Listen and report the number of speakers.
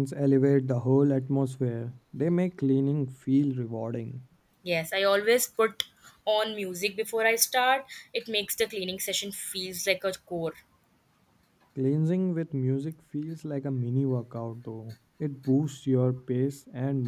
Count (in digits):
2